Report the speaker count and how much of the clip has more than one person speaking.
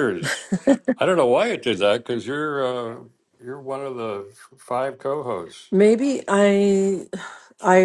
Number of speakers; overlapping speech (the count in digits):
2, no overlap